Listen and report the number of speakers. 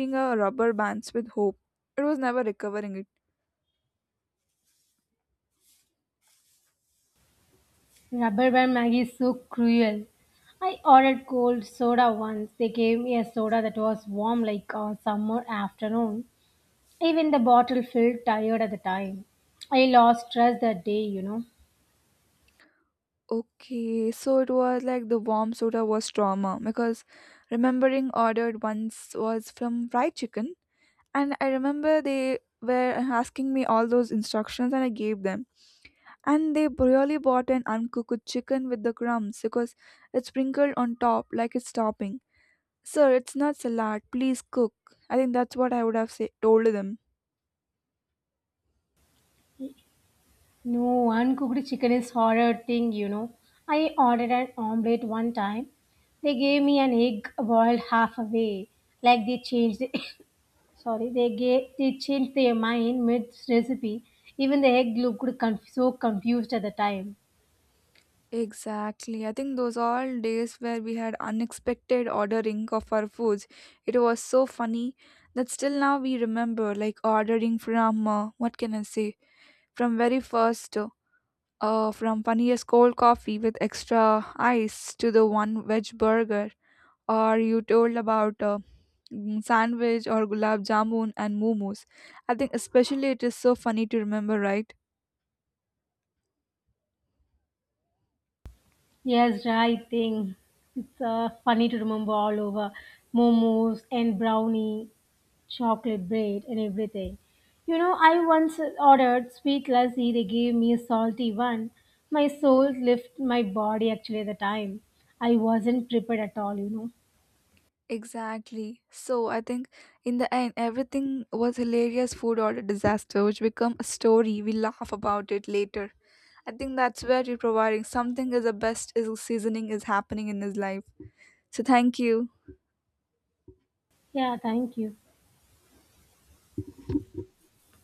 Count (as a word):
two